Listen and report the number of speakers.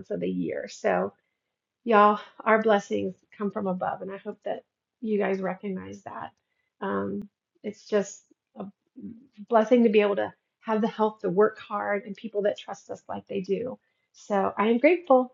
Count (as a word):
one